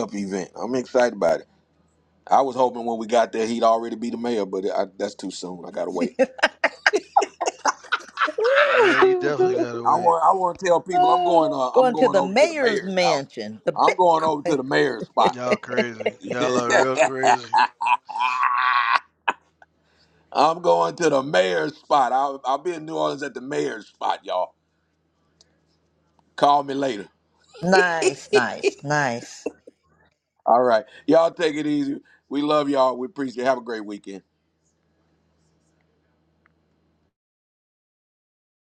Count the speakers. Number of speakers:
3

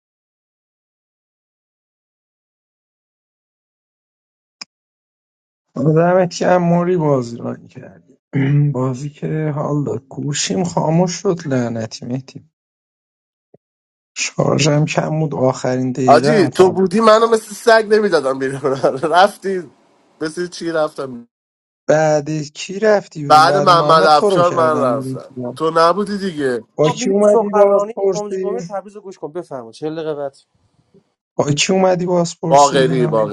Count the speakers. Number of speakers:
3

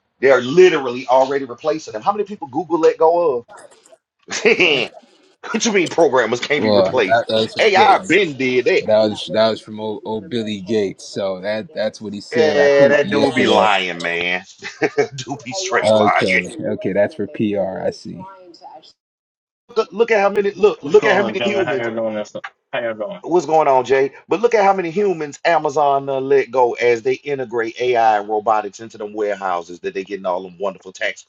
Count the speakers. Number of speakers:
3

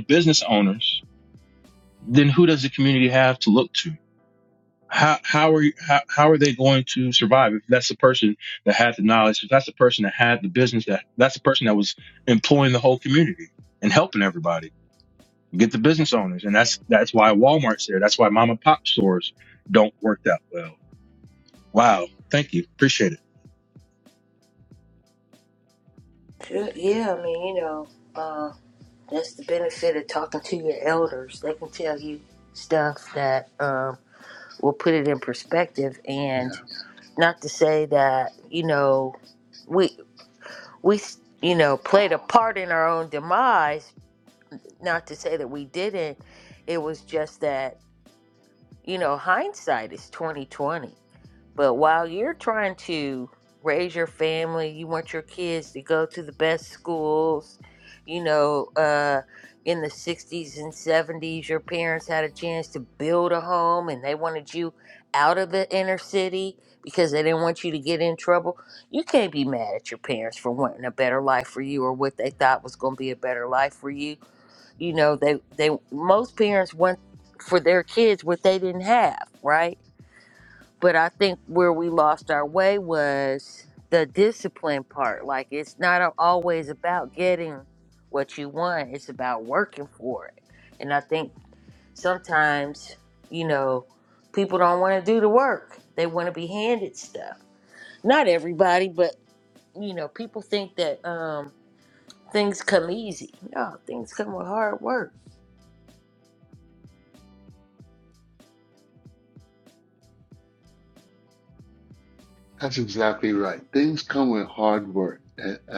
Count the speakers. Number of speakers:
3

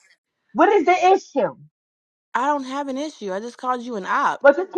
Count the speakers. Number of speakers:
2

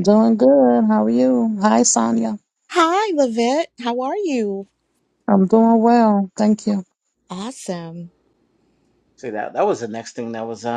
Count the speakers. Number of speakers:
3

